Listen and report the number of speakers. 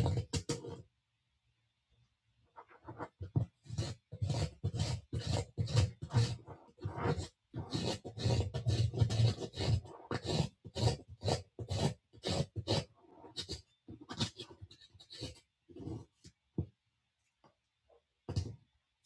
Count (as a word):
zero